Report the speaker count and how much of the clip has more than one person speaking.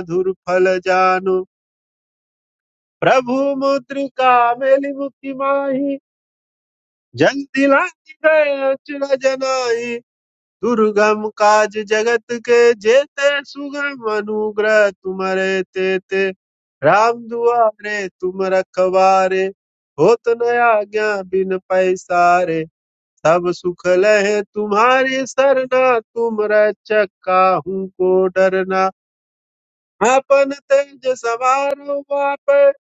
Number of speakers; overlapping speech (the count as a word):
one, no overlap